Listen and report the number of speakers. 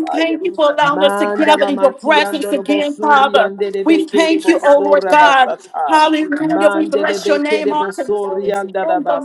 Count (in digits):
2